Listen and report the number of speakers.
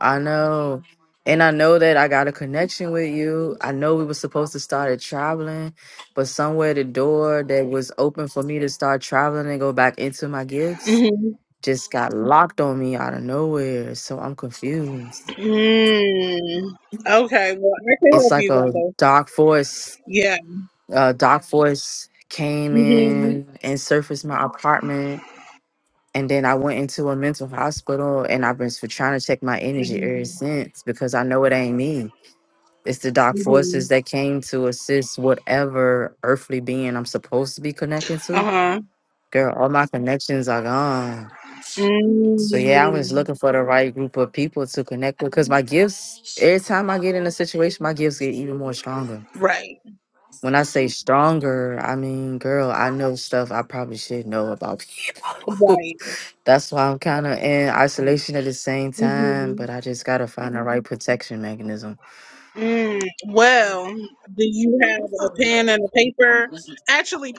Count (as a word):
two